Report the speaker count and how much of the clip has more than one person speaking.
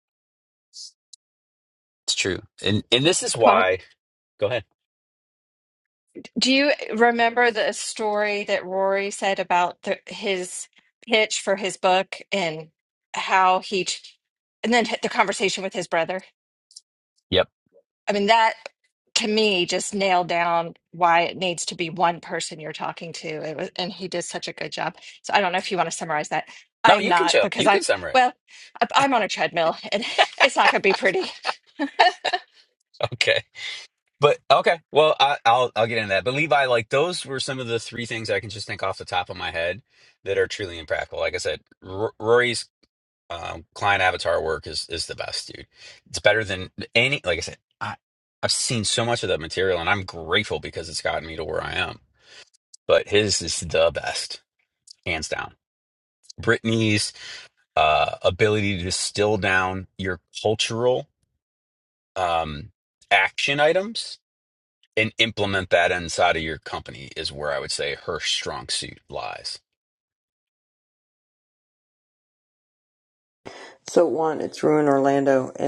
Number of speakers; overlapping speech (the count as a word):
three, about 2%